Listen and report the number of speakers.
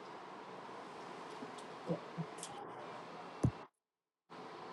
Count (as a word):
zero